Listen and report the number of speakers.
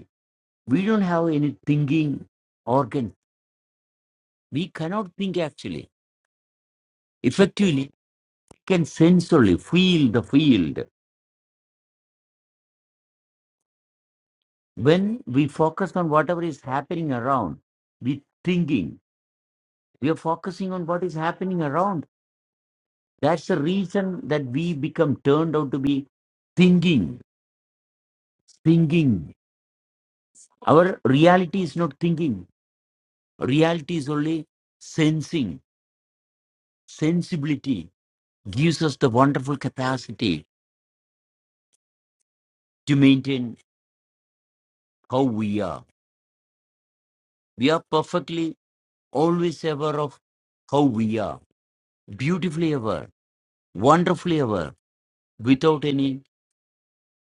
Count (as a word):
one